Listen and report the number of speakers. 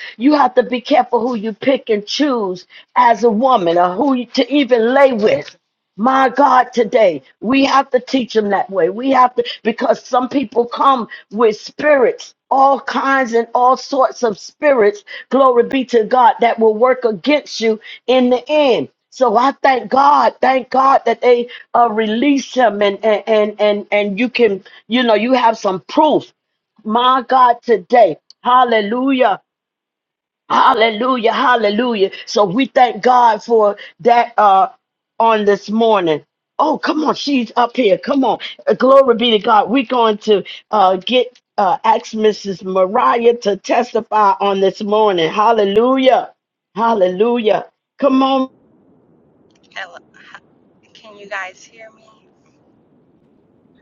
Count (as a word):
two